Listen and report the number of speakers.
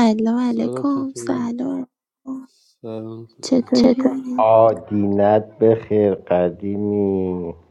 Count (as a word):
three